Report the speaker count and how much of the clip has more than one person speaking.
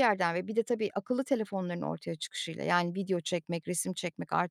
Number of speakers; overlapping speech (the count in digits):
1, no overlap